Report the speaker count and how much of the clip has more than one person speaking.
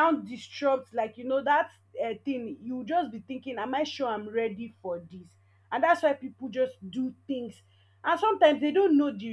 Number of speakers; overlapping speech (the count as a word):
one, no overlap